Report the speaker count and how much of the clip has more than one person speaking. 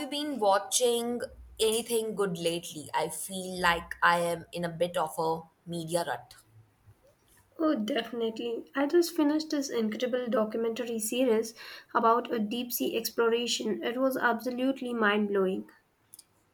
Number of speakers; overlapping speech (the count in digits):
2, no overlap